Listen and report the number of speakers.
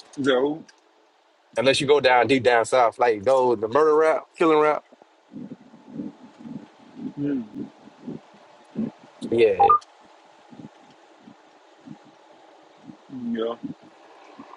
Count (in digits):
2